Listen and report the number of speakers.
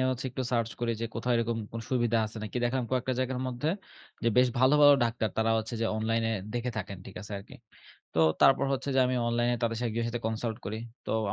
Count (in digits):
1